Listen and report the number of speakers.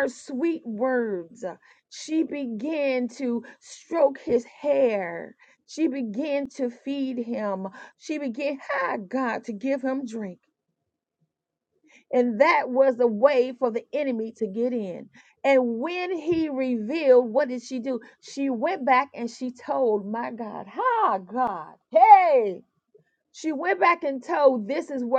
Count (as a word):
one